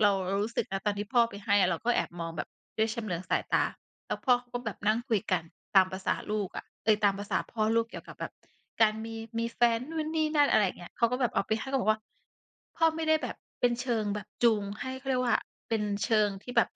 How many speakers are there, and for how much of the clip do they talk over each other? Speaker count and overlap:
1, no overlap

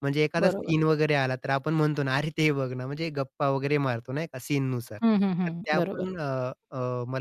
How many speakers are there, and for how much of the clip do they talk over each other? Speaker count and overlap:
2, about 13%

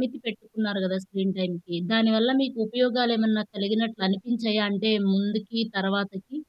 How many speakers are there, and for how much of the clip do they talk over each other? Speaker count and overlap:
1, no overlap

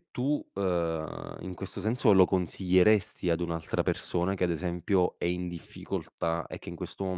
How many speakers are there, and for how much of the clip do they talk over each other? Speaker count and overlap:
1, no overlap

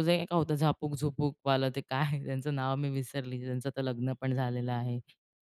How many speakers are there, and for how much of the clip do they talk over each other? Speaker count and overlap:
1, no overlap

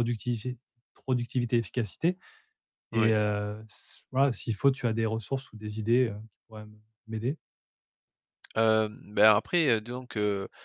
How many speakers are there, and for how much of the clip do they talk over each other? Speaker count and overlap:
2, about 2%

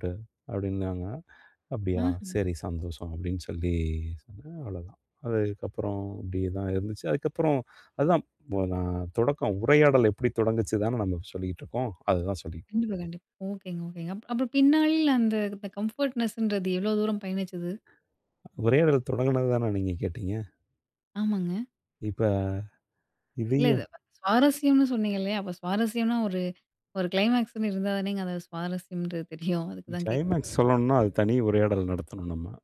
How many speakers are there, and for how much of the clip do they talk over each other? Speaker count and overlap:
2, about 2%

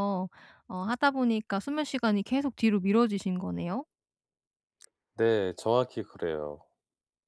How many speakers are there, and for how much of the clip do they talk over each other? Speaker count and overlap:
2, no overlap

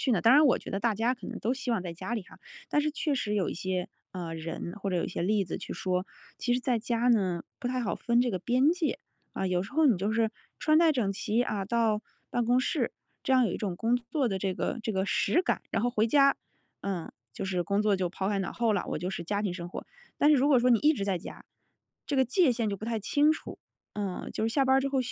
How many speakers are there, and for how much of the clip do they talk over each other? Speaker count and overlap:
1, no overlap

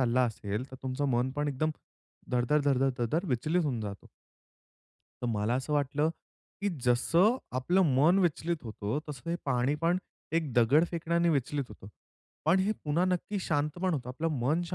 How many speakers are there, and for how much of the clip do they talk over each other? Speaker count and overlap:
1, no overlap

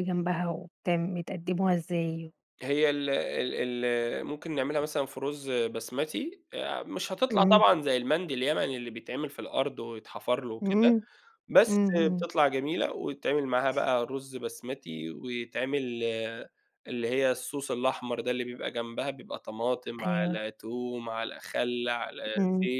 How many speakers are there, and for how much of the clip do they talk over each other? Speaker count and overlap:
2, about 9%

